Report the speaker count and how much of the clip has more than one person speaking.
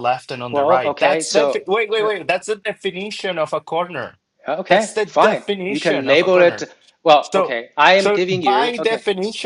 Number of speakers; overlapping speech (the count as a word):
two, about 47%